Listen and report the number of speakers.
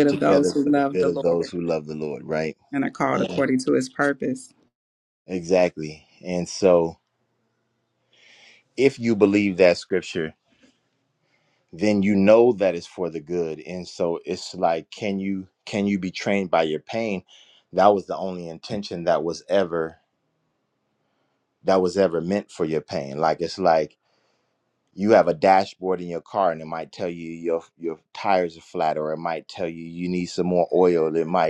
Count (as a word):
two